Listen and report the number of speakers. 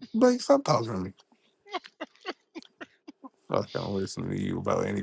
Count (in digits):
1